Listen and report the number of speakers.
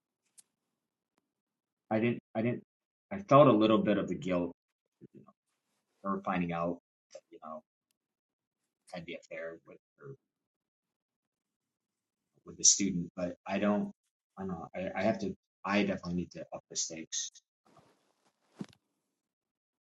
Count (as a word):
one